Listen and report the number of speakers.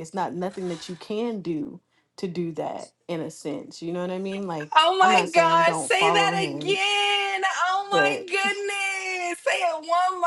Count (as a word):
two